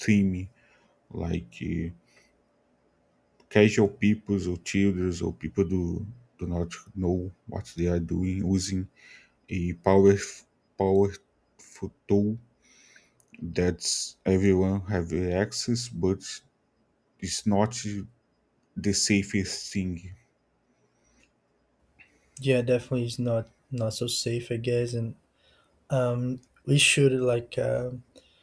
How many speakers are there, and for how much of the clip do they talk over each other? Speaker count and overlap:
two, no overlap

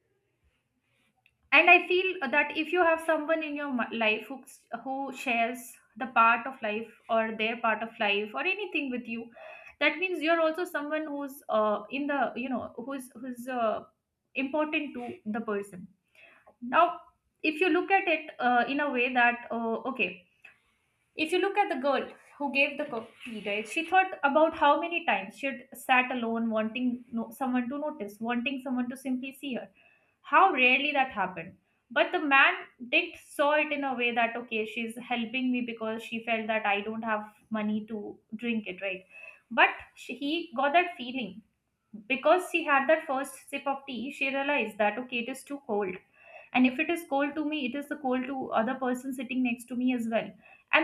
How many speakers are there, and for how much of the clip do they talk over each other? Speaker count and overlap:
one, no overlap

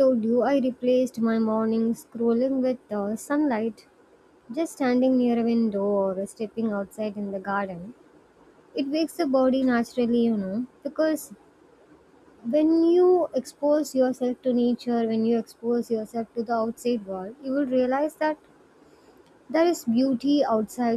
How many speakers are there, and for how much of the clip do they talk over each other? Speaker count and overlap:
one, no overlap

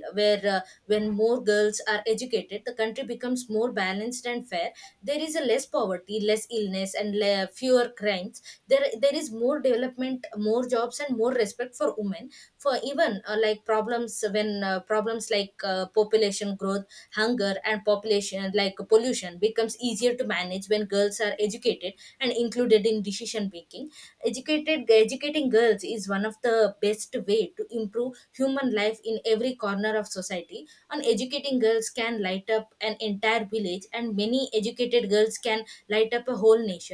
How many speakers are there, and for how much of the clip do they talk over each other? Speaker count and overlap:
one, no overlap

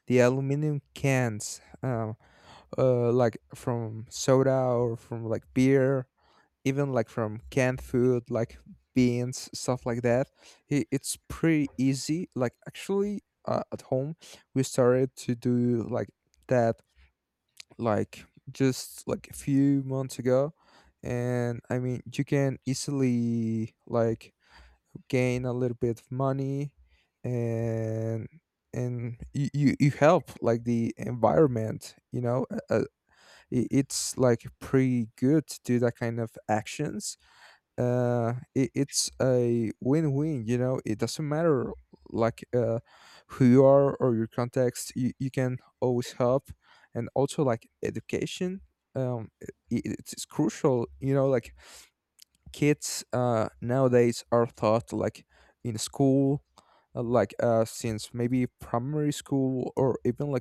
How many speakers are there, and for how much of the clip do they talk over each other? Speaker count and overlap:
one, no overlap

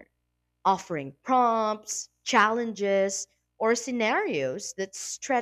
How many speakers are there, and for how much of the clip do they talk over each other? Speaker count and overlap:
one, no overlap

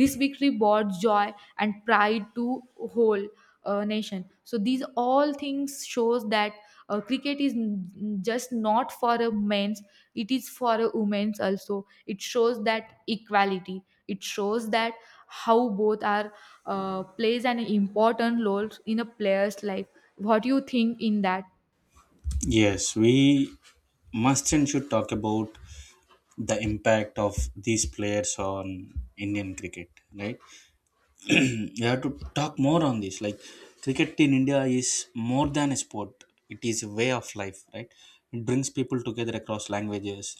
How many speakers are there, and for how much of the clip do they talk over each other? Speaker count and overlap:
two, no overlap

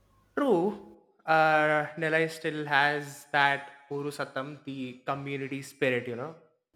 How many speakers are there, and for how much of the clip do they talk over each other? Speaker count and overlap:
one, no overlap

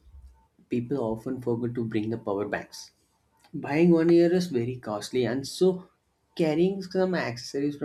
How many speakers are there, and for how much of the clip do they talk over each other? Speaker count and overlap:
one, no overlap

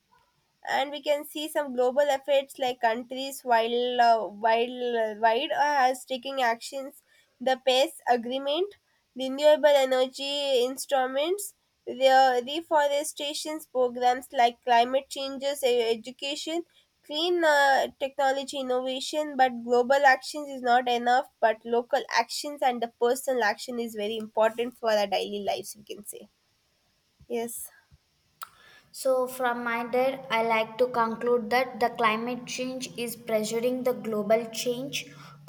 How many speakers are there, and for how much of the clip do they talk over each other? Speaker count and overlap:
two, no overlap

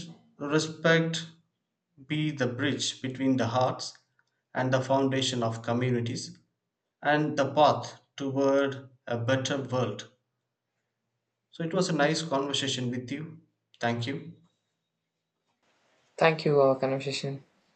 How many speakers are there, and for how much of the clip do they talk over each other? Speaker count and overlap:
two, no overlap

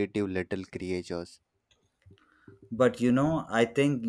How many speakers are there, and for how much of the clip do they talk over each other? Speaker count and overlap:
two, no overlap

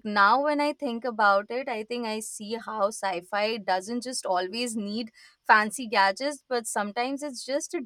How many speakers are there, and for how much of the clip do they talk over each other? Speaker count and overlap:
one, no overlap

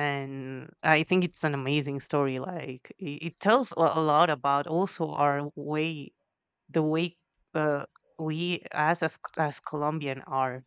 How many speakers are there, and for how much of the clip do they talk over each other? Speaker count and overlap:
one, no overlap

